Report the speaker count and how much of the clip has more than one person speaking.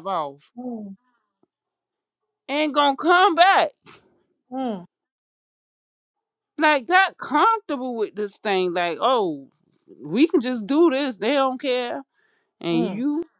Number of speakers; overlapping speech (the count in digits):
2, about 2%